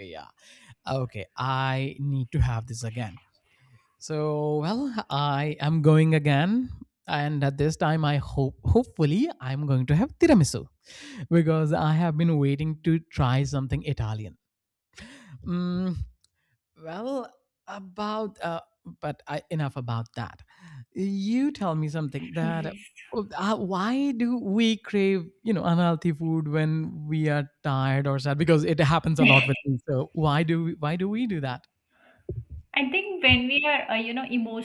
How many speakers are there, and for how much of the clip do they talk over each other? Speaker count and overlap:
2, about 1%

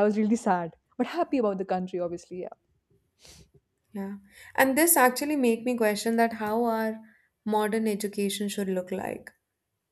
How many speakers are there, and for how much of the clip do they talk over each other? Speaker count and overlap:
2, no overlap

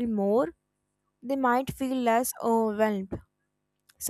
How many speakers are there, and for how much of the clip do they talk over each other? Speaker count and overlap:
1, no overlap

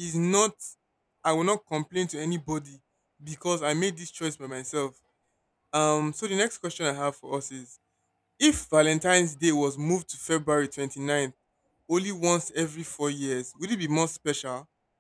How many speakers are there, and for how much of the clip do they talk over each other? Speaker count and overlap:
1, no overlap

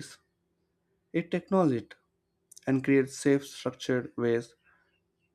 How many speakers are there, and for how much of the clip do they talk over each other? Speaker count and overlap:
1, no overlap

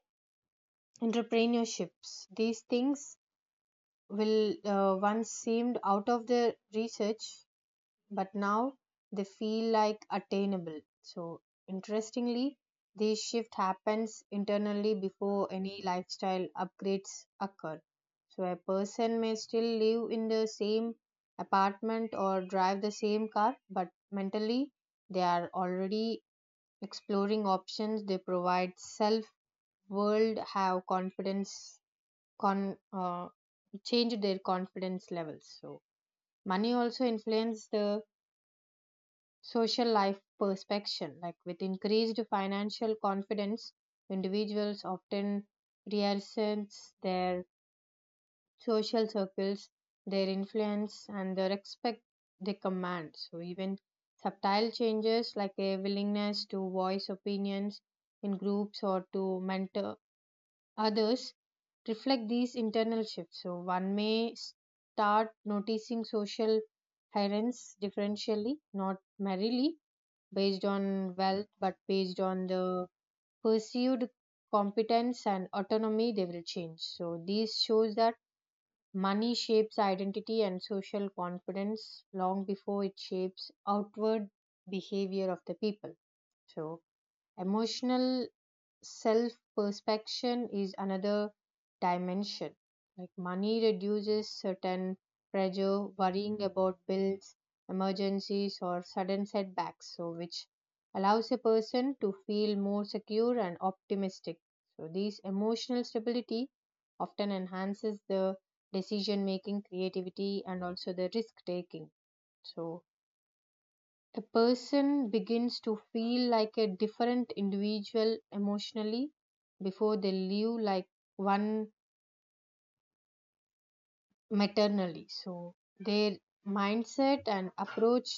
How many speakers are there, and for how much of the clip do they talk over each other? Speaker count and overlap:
1, no overlap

